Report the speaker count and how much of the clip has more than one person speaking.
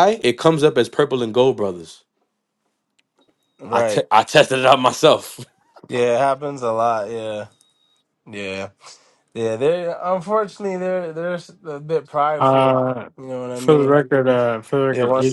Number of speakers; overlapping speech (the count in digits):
3, about 10%